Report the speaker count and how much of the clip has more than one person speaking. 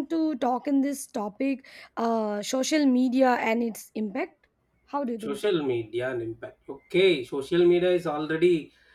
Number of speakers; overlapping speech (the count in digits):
2, about 2%